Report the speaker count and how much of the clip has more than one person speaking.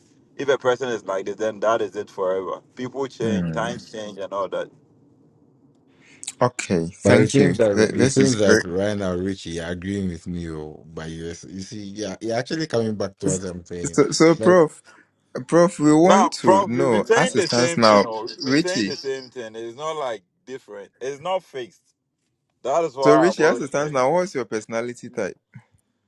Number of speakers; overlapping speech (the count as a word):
three, about 22%